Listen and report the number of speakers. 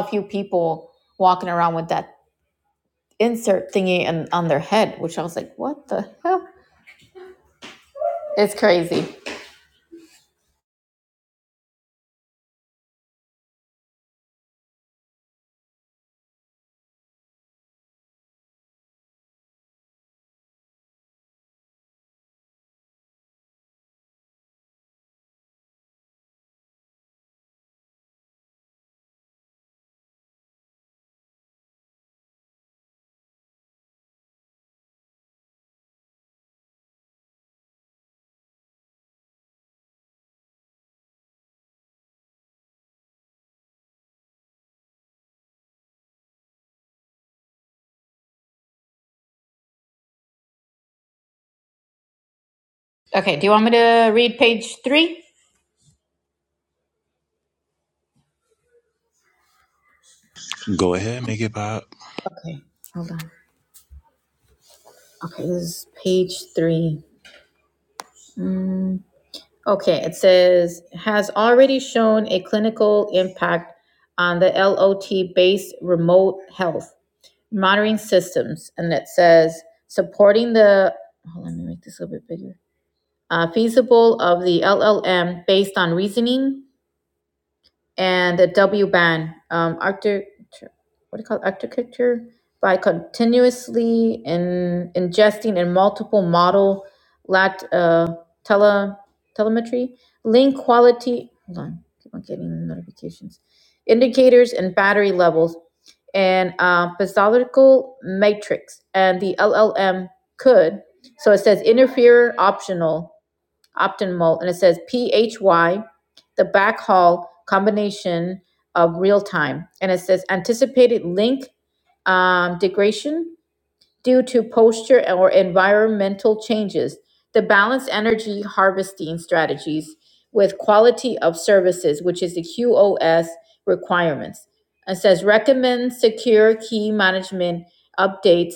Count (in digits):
2